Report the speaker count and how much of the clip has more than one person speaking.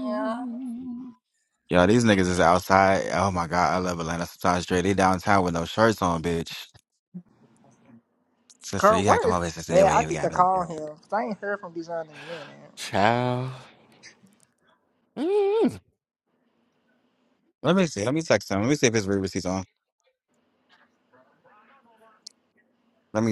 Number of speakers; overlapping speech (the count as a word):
three, about 6%